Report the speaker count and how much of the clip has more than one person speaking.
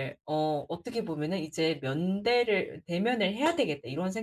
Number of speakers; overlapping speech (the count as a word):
one, no overlap